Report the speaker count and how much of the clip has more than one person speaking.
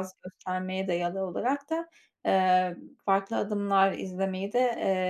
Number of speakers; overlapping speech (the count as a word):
one, no overlap